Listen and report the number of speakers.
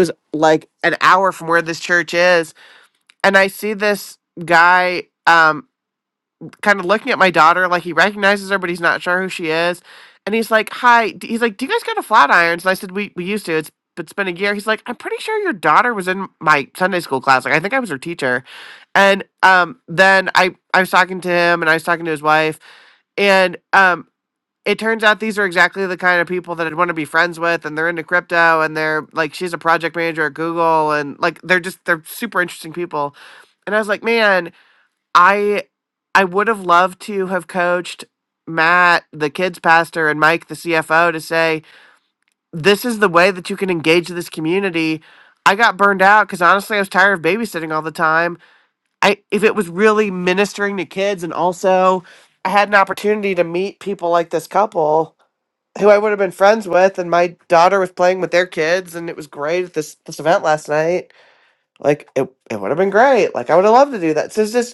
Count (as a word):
one